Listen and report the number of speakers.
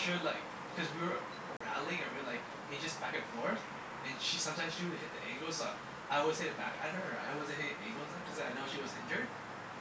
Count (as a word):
one